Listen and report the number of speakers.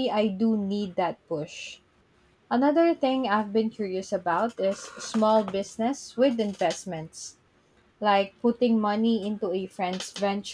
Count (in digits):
1